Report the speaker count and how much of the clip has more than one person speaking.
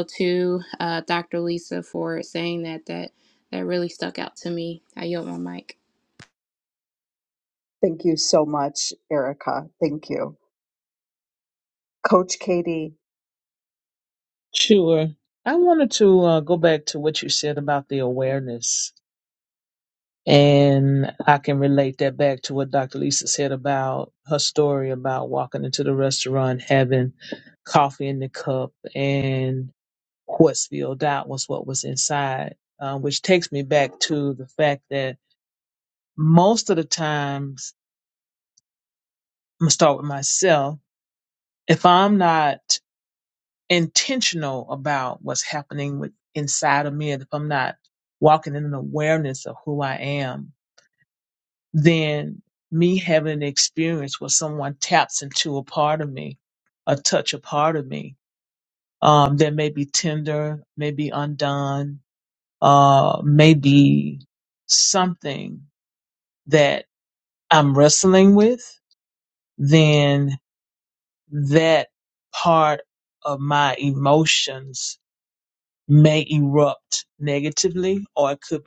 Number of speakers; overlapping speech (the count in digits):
3, no overlap